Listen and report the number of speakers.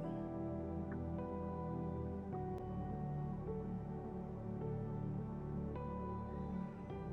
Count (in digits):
0